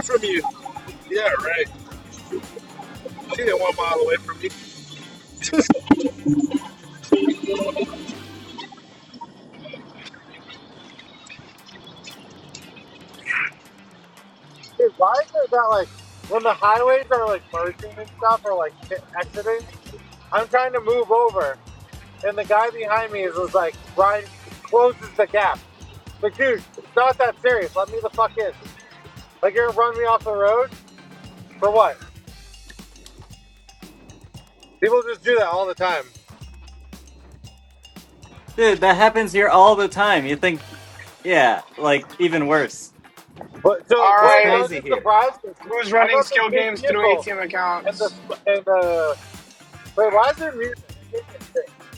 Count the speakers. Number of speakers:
four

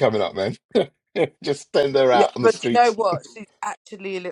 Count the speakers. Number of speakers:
two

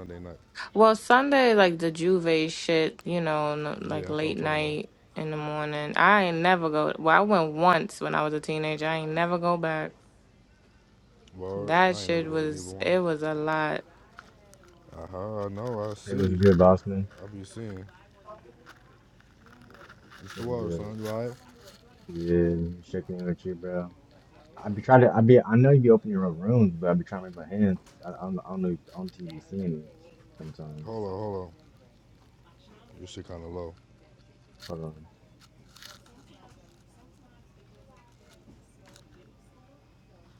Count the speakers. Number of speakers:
three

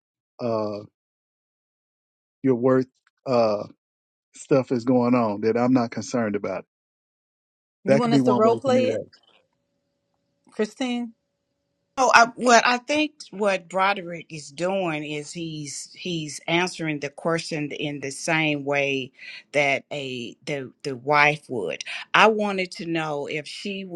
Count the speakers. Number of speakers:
three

